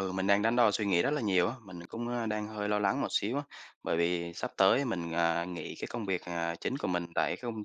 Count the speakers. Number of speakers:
1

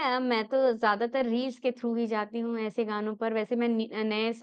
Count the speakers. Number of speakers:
1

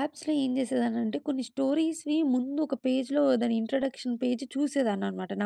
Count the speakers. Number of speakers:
1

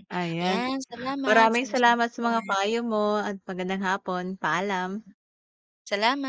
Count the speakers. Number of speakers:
2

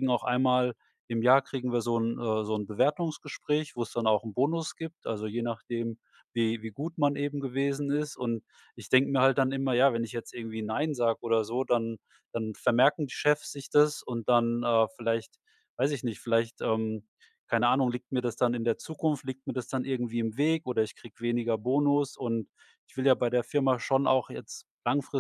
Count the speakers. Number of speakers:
1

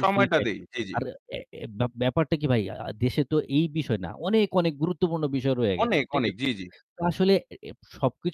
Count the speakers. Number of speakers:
2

